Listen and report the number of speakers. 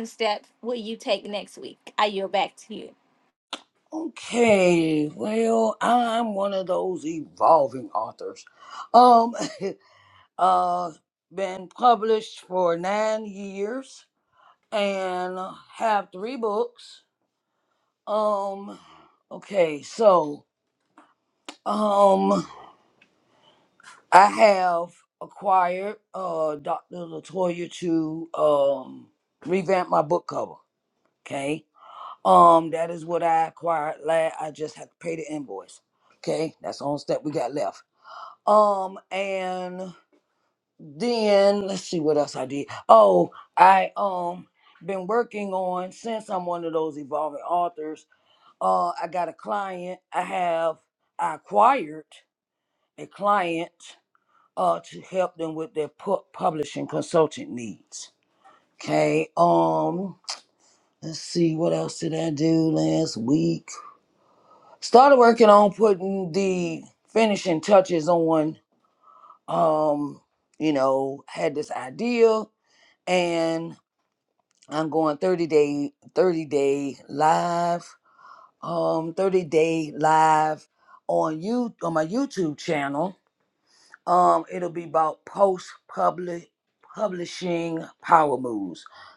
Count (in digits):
2